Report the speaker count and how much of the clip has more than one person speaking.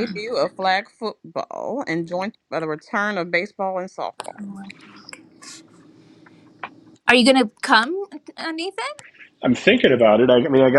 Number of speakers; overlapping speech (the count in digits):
3, about 1%